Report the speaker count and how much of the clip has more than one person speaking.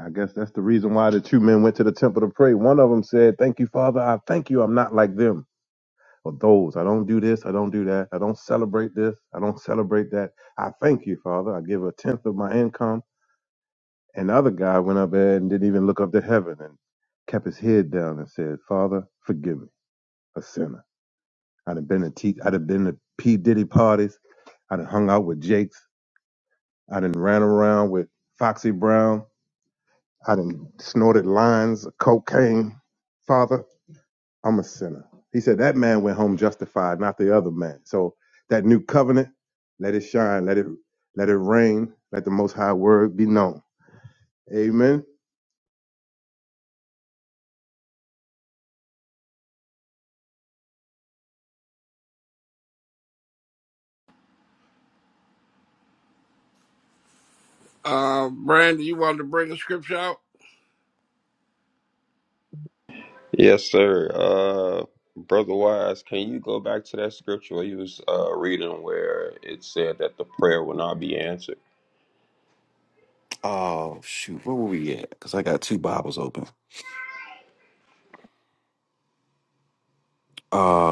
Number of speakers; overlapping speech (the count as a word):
four, no overlap